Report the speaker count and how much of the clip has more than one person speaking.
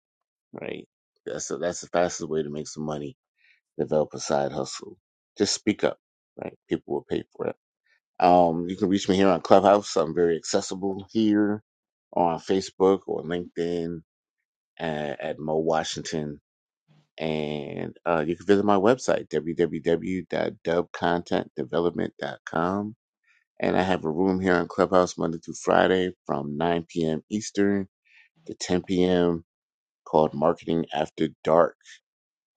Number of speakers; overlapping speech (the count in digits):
1, no overlap